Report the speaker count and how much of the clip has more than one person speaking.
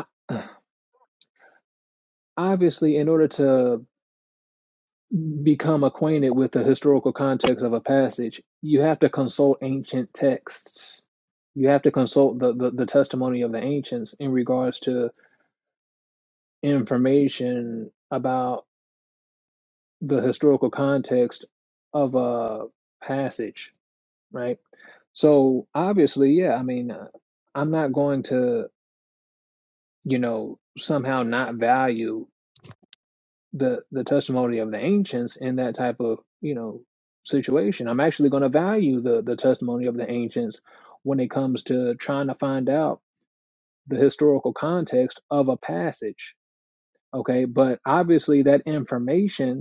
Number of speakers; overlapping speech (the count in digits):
1, no overlap